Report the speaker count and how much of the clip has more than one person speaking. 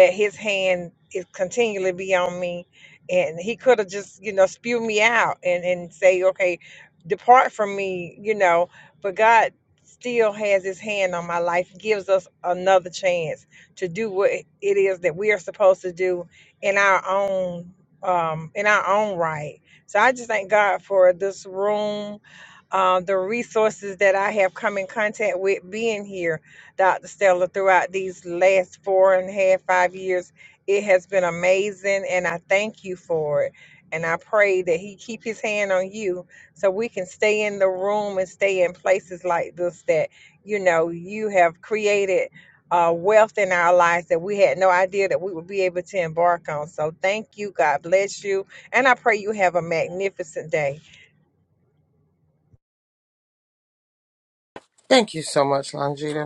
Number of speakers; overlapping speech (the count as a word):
two, no overlap